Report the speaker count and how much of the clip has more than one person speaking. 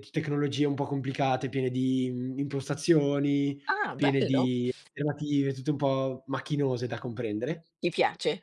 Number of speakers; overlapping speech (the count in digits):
2, about 6%